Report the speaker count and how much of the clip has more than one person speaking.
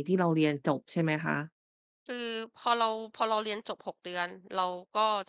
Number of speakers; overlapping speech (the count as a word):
two, no overlap